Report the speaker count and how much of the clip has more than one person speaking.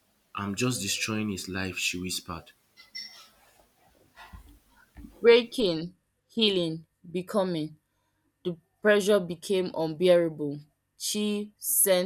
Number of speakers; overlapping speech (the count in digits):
2, no overlap